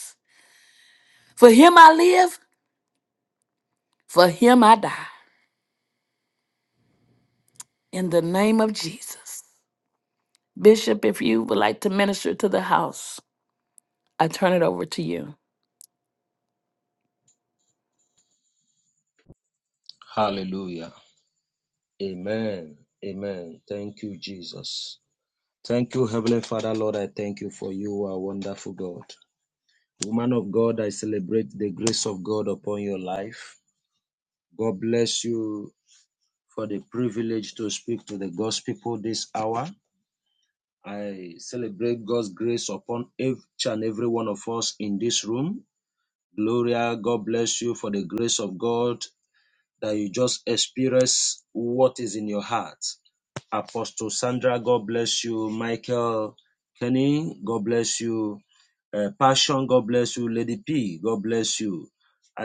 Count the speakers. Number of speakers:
2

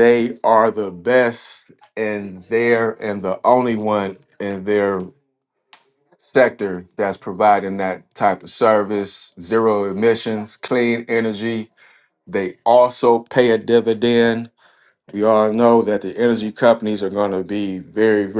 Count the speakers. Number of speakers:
1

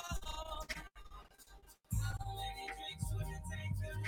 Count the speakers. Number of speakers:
0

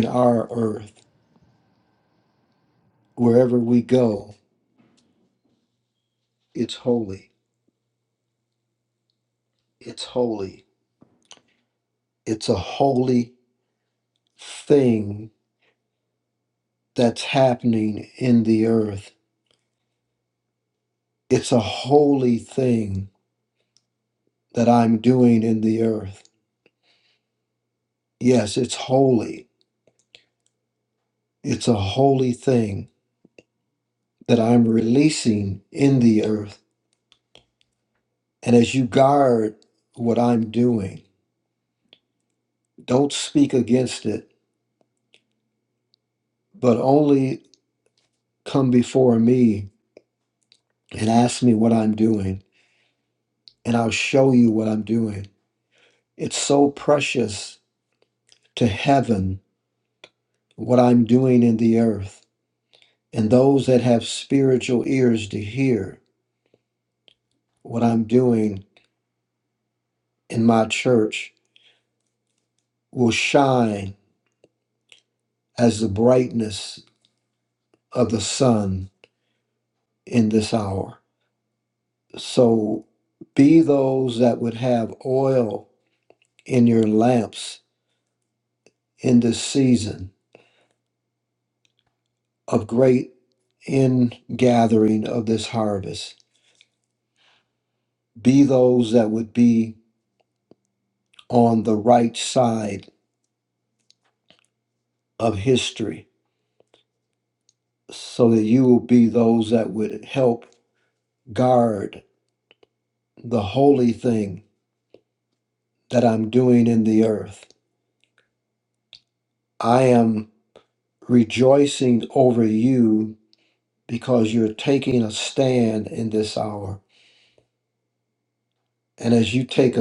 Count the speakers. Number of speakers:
1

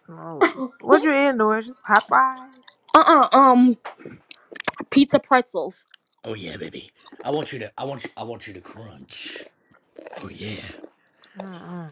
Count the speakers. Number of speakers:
3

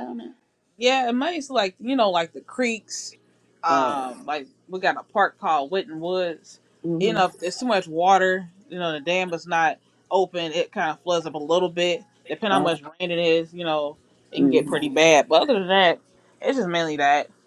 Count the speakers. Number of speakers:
2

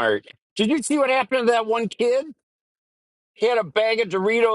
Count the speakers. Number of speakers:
1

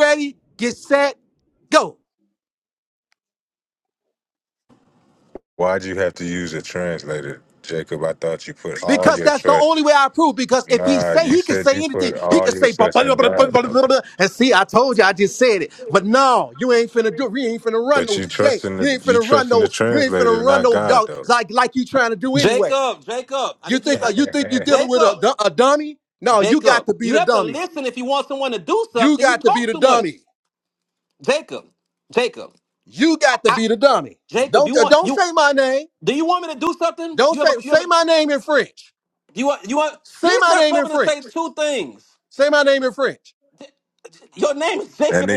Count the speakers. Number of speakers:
3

